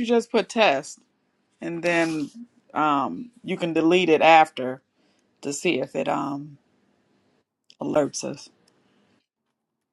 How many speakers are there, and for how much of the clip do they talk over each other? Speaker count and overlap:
1, no overlap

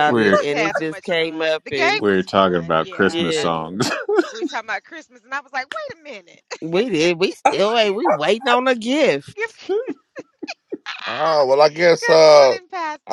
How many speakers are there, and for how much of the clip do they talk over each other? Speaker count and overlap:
4, about 32%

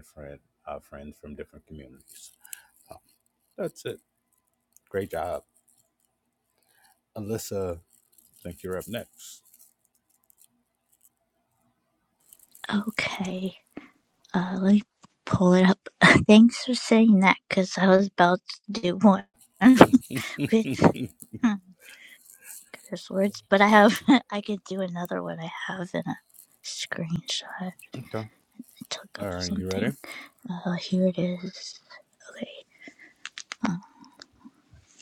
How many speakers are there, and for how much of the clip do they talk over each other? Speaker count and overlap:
2, about 4%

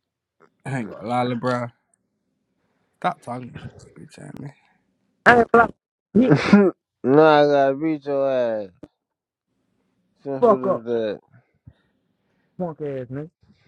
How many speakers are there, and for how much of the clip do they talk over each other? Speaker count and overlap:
3, about 4%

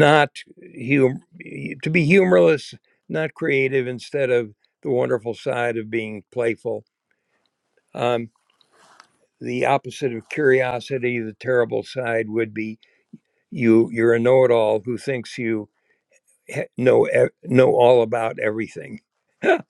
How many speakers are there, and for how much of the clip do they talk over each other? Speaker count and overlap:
1, no overlap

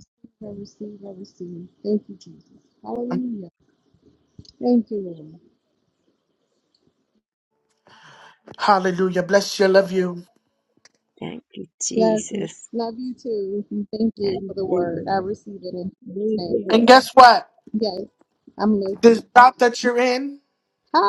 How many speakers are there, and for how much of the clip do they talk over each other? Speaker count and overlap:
3, about 11%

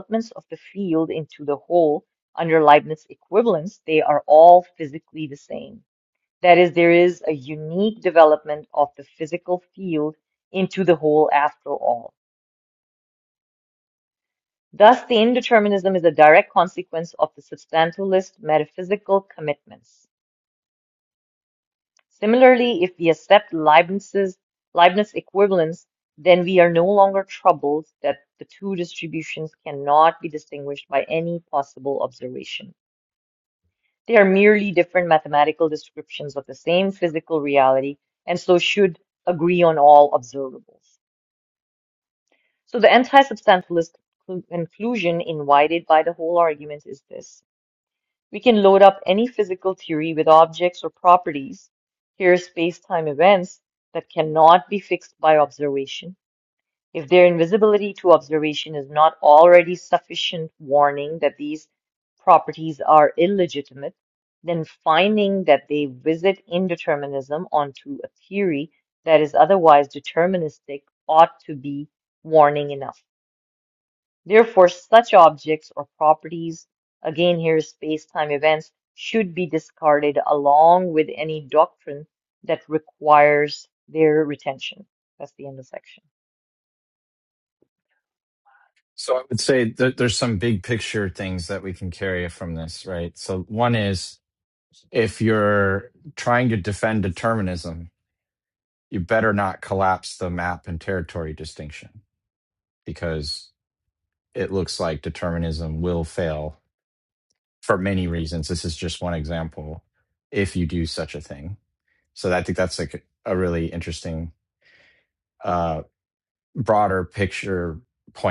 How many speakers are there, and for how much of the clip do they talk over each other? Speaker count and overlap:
2, no overlap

